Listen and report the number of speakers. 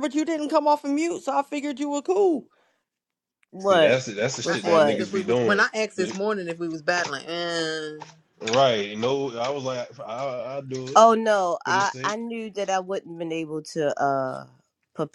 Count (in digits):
4